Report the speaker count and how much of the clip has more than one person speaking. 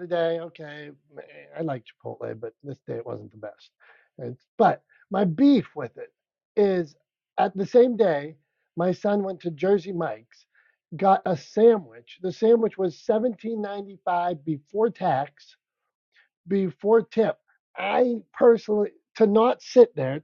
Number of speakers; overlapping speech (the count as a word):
one, no overlap